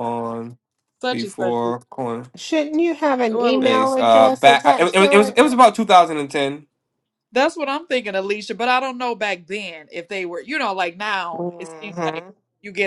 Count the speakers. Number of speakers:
3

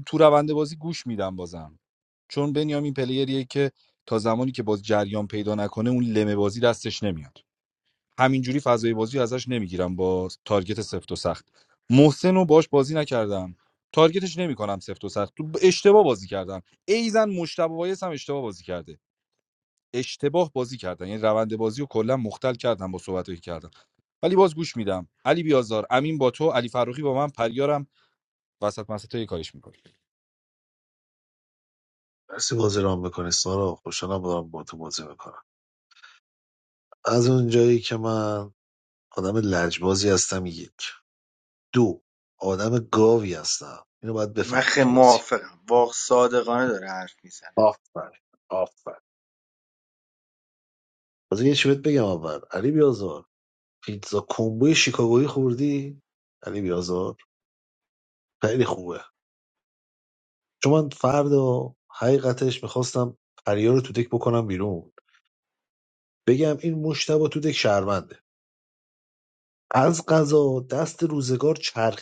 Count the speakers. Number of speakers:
3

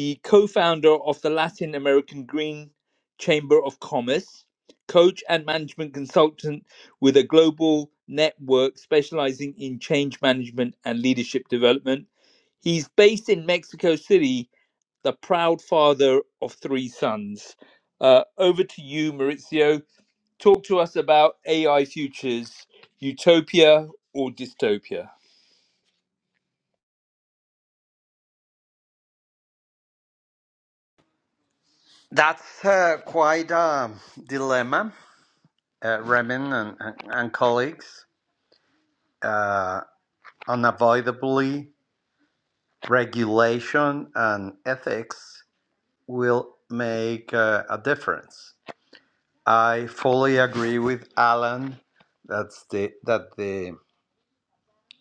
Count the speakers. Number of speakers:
2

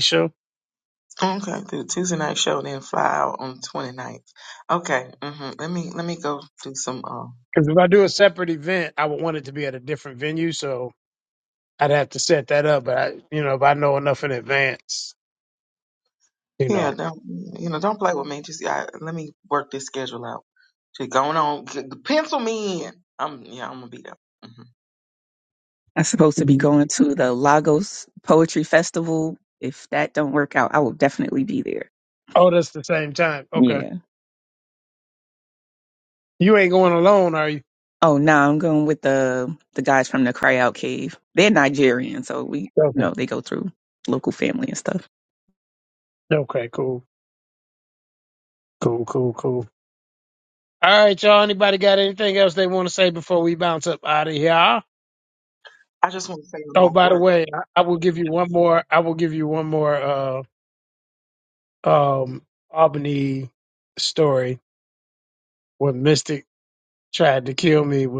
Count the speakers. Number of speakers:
3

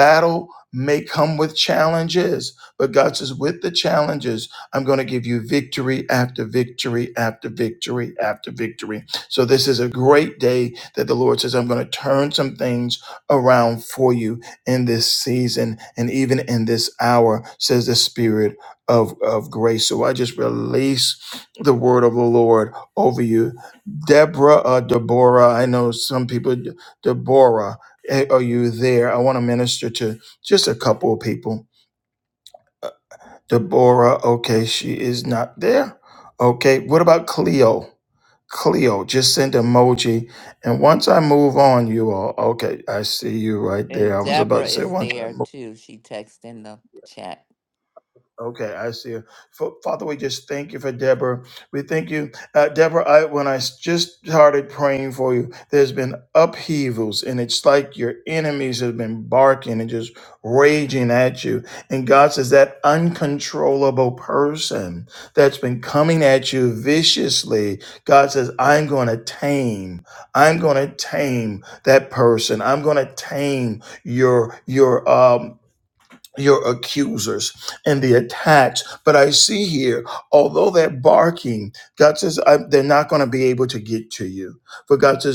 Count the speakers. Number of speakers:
2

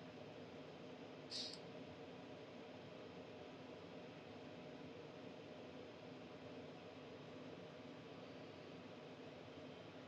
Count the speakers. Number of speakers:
0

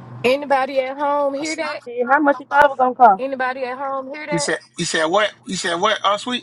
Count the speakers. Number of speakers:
3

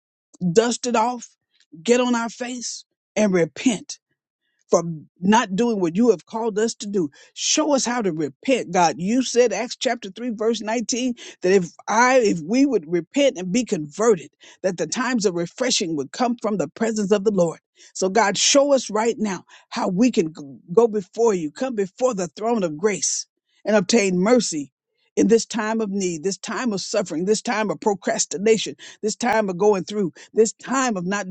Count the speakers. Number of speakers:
1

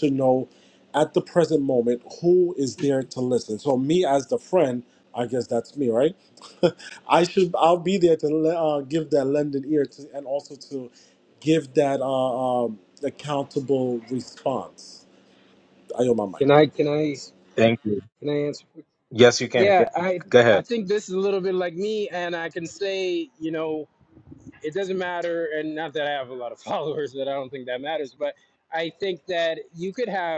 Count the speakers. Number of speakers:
3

